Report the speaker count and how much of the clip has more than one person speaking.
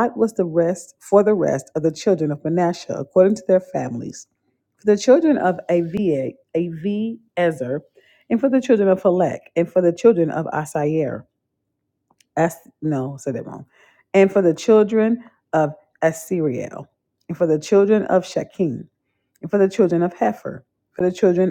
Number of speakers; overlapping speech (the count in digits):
1, no overlap